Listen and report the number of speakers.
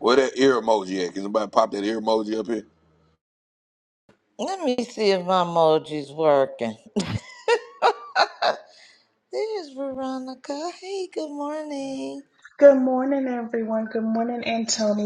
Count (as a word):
three